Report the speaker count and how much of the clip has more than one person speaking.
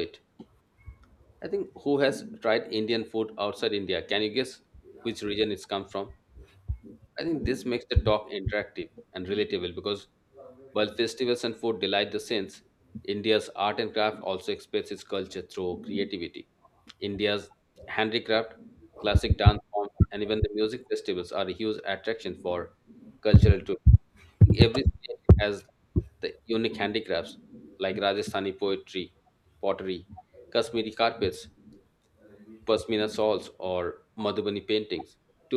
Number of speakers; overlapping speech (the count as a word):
one, no overlap